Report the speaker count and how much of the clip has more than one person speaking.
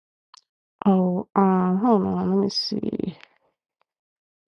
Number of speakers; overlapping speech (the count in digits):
1, no overlap